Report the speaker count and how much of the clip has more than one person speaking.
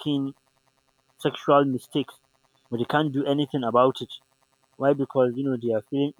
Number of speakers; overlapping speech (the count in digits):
1, no overlap